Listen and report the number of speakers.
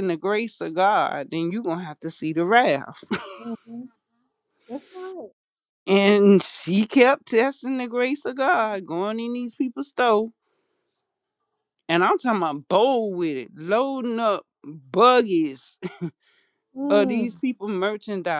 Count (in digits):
2